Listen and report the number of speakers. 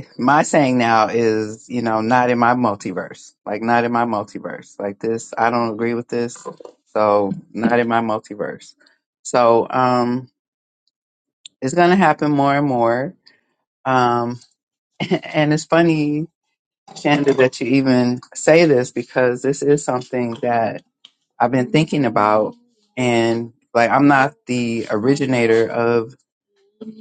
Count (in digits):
1